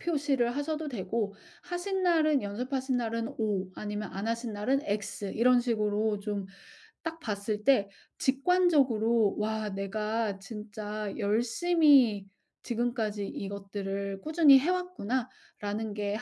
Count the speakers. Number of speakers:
one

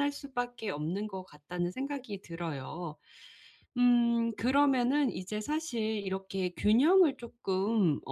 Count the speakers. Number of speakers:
one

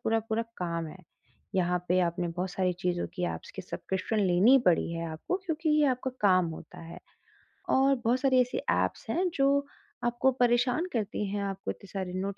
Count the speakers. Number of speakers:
one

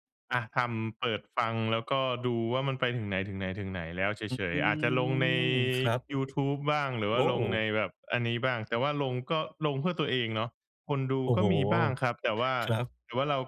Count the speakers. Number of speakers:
two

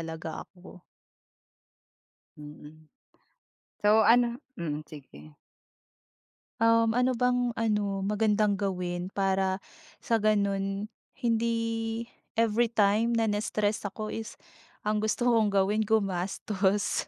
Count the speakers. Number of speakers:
two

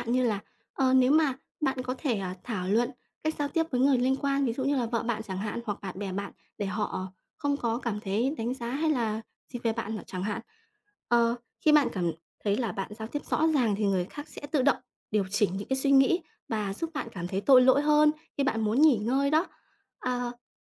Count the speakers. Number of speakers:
one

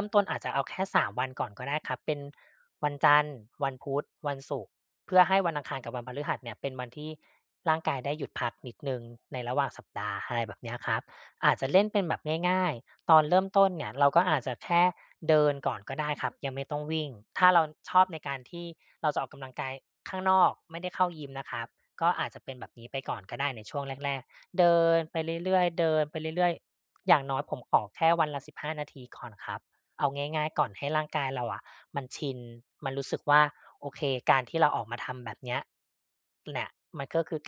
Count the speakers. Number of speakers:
one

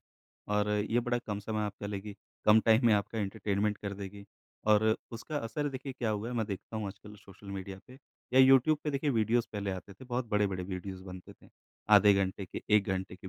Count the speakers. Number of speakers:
one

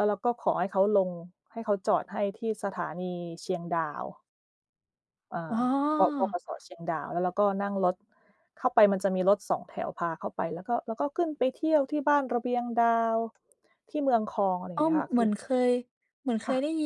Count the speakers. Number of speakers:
two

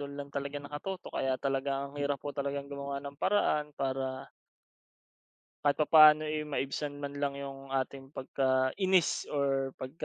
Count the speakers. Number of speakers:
one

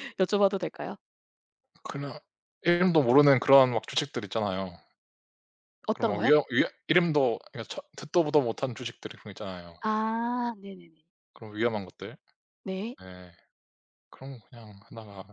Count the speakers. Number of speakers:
two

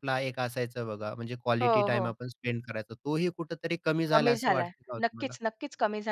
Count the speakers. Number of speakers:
two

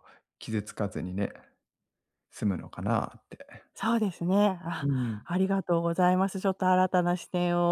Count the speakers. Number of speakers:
two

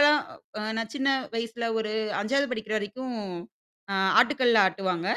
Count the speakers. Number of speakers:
one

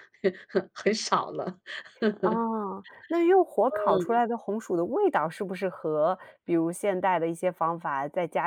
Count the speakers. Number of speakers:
two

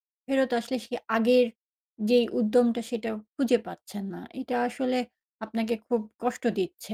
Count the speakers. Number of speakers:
one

